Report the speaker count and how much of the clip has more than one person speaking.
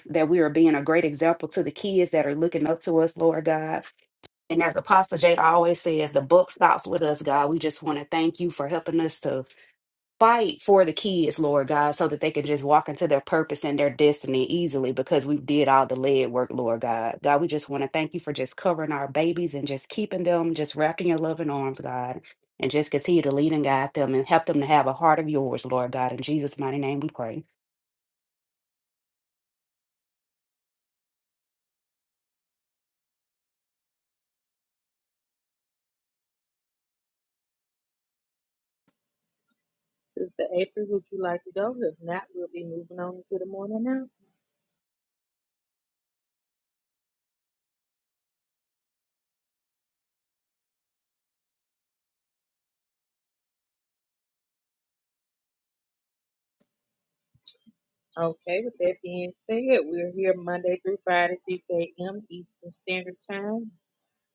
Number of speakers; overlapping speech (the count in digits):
2, no overlap